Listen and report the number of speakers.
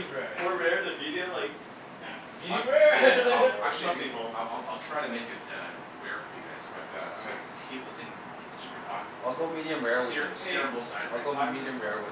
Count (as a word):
four